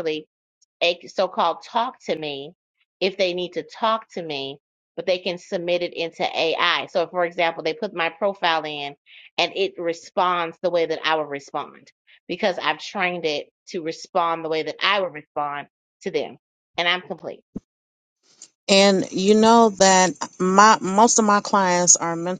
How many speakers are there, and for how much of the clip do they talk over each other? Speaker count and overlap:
2, no overlap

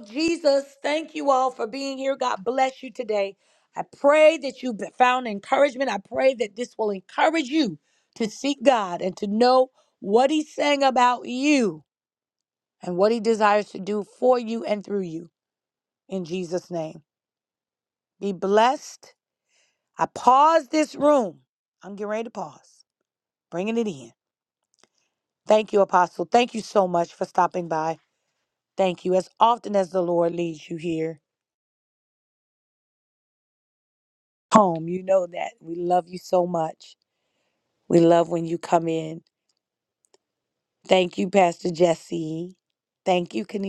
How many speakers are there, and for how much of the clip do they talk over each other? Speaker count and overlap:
1, no overlap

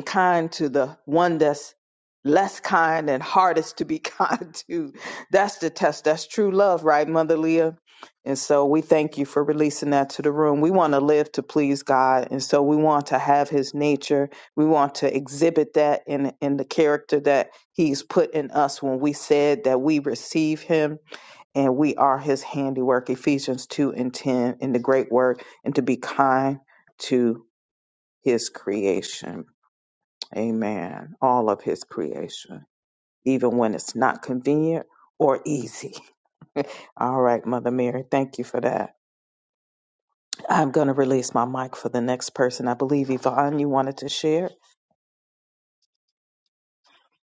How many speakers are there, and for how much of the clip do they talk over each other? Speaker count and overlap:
1, no overlap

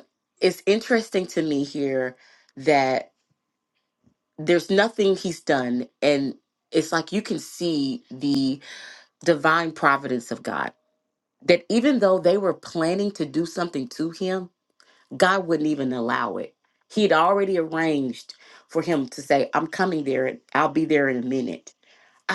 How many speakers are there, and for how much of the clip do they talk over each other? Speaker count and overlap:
1, no overlap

